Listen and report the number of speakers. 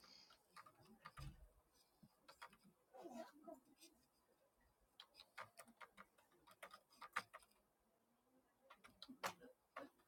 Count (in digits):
0